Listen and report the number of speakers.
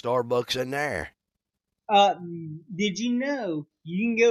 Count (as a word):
two